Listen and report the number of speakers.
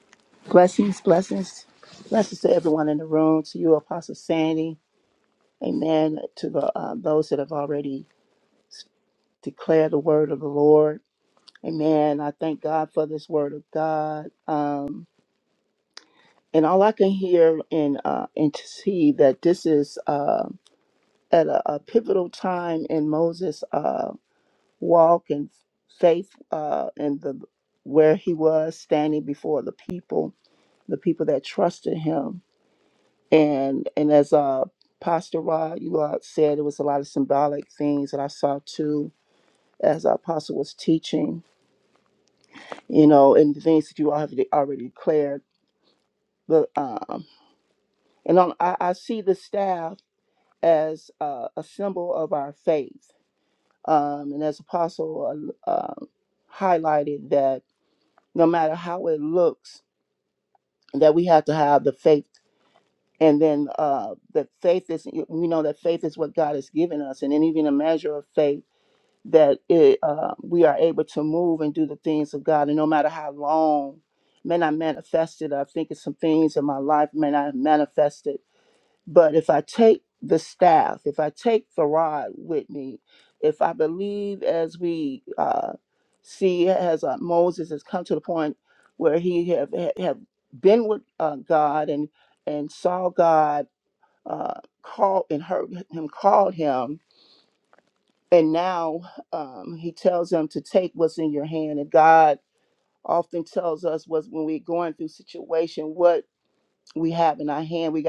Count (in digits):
1